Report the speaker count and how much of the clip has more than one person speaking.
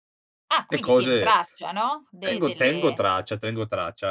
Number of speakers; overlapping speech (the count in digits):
2, about 34%